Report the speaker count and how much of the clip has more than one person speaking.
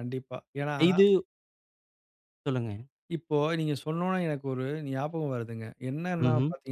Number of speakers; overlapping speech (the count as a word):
two, about 5%